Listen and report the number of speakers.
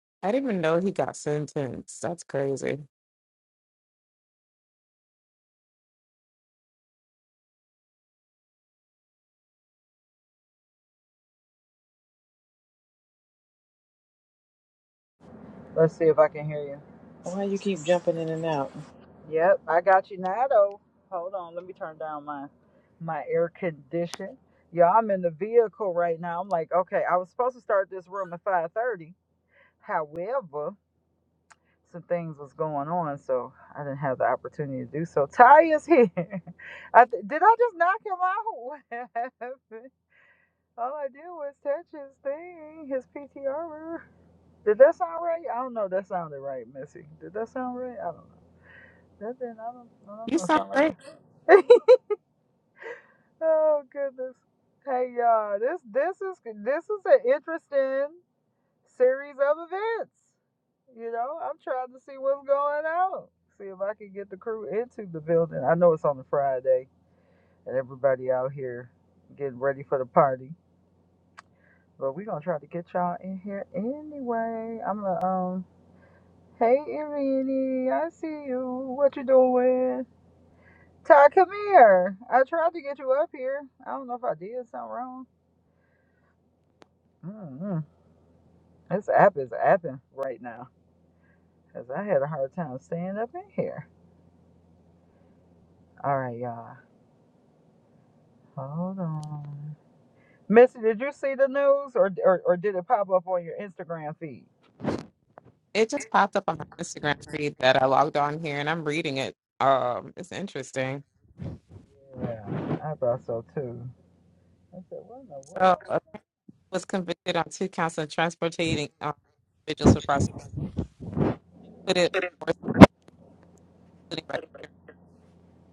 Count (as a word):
three